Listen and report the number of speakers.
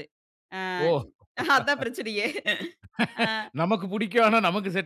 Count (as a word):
two